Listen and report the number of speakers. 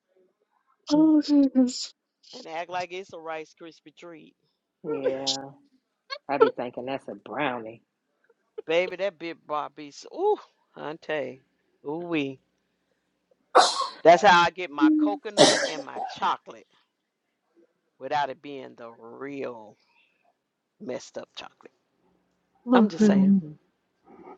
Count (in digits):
3